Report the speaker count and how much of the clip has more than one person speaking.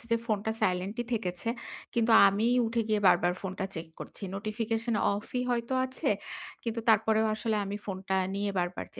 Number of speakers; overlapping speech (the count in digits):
1, no overlap